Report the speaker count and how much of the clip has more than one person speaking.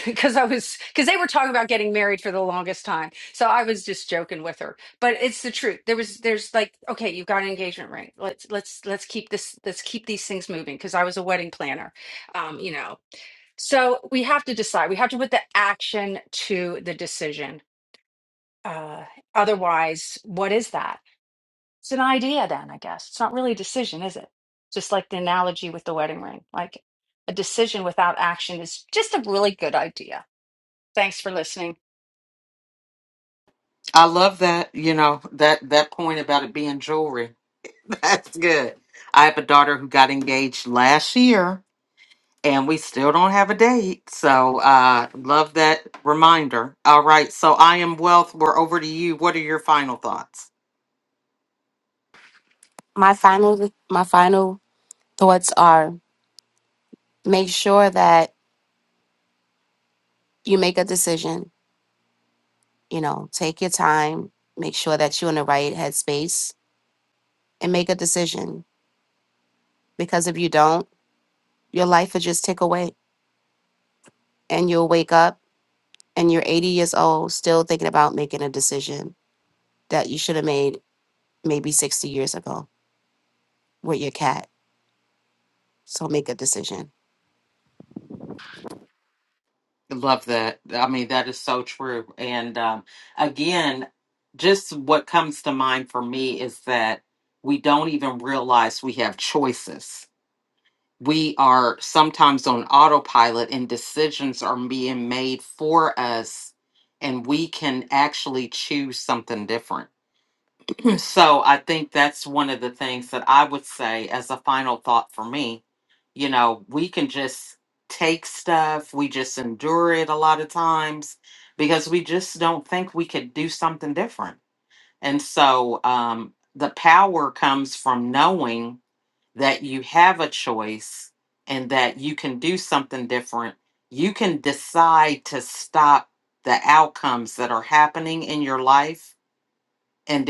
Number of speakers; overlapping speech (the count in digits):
3, no overlap